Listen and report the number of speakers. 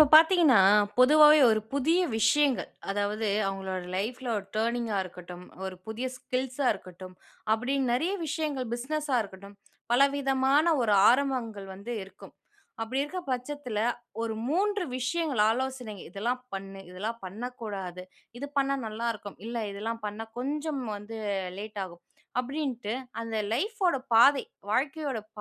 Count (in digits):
1